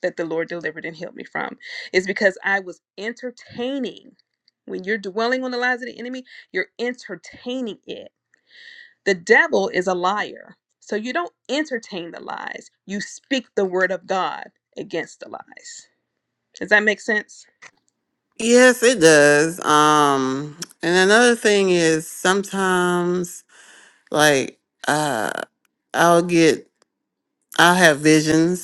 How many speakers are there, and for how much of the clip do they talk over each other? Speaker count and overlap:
2, no overlap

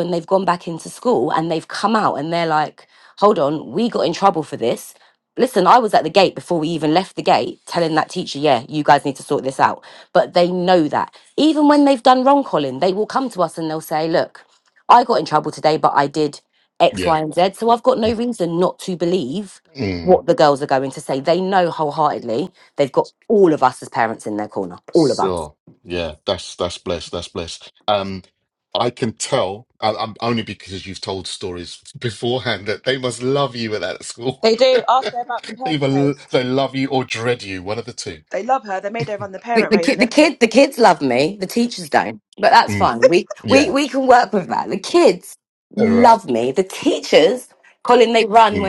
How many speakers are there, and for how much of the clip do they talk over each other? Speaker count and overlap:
3, about 6%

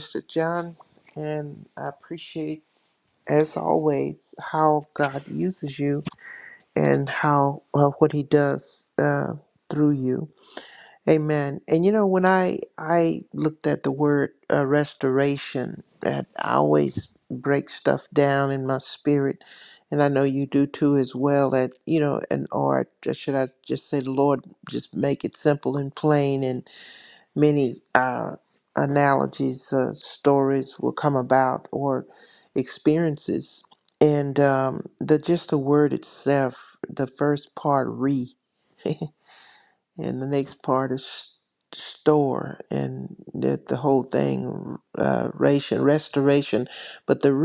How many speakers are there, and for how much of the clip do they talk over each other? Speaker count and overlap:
1, no overlap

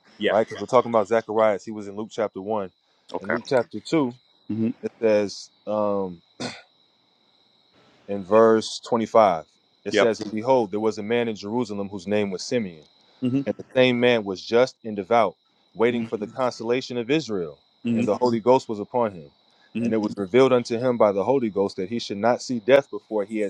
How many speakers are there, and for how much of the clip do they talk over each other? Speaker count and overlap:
2, about 4%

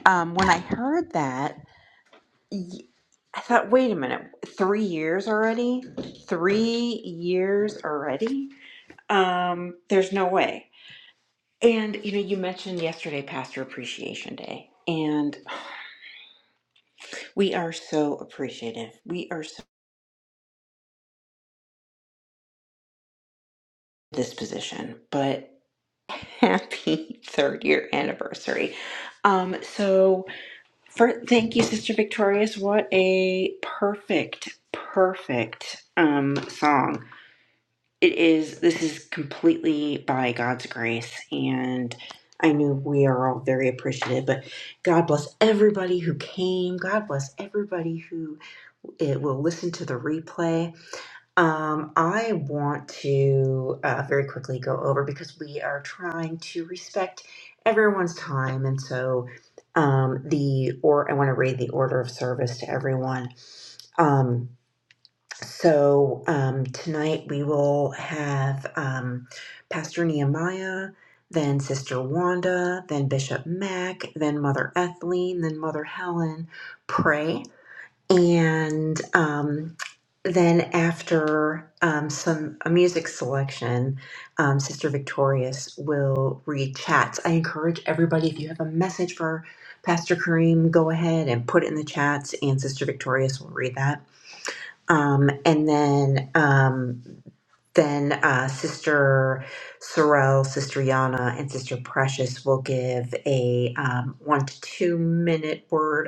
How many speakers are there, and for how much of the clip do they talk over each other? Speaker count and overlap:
1, no overlap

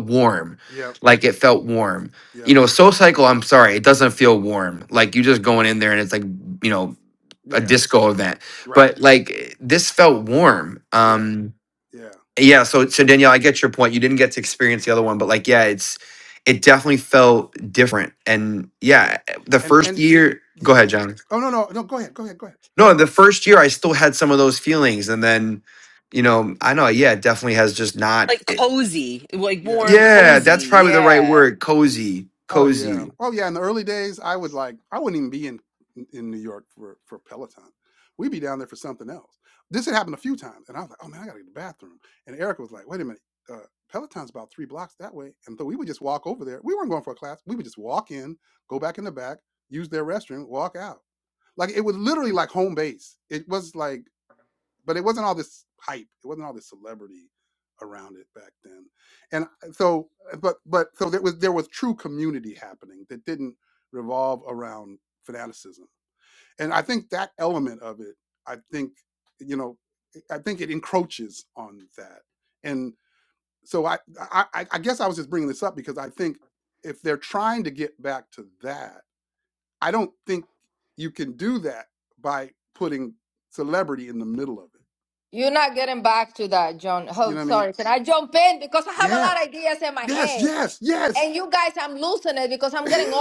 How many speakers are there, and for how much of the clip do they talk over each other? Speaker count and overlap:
4, about 5%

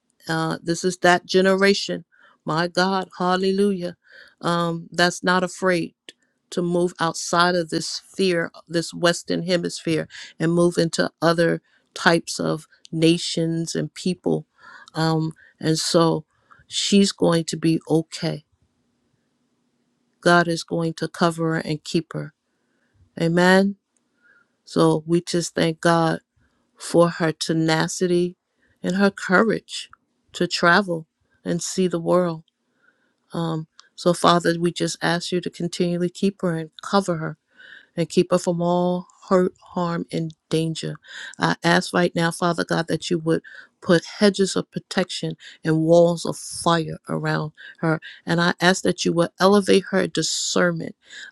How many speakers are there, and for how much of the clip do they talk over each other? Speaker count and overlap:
1, no overlap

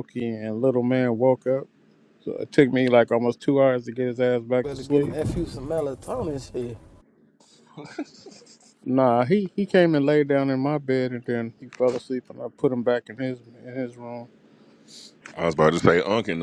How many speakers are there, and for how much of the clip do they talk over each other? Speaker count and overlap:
3, about 3%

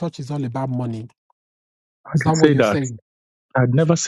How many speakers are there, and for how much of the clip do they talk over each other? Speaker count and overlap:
2, about 15%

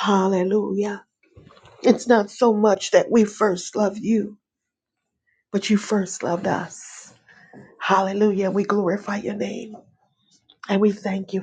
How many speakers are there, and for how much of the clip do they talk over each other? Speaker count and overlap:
1, no overlap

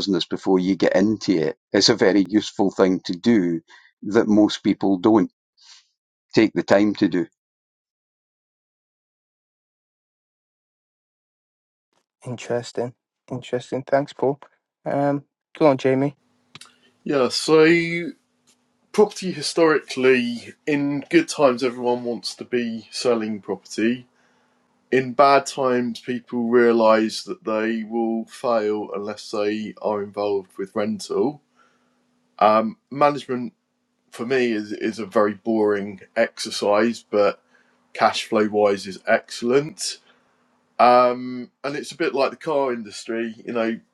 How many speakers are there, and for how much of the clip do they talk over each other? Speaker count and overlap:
3, no overlap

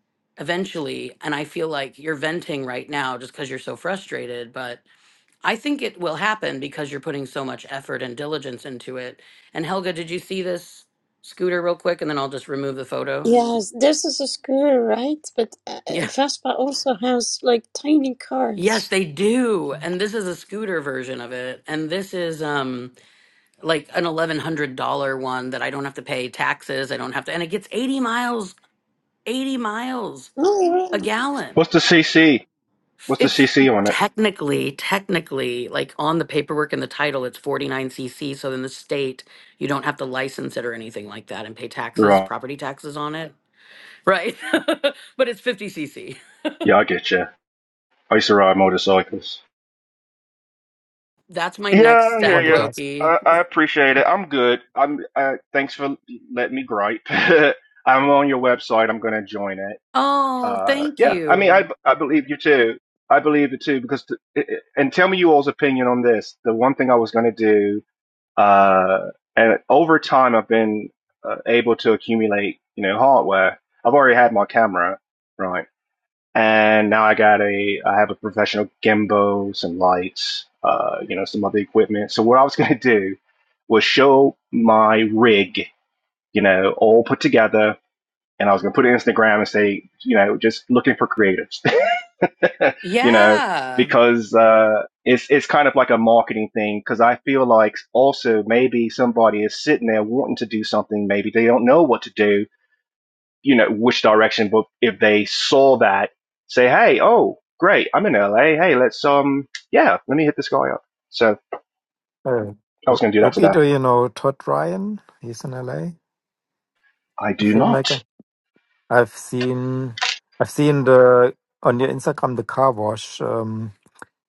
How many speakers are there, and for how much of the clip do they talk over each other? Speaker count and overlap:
4, about 5%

